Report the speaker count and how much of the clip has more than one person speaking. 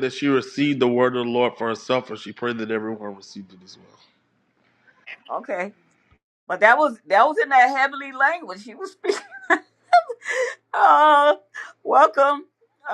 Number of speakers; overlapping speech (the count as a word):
two, no overlap